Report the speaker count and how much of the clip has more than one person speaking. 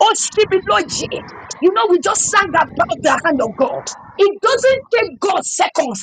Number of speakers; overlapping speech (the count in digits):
1, no overlap